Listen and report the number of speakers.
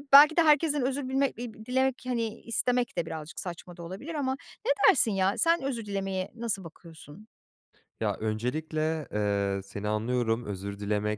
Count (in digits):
2